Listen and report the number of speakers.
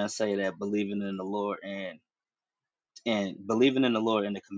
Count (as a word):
one